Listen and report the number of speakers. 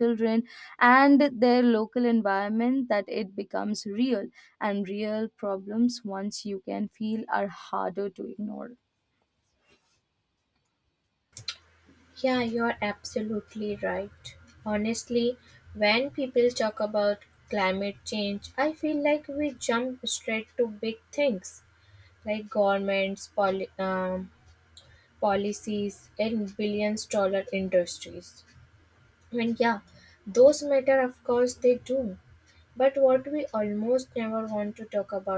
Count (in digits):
2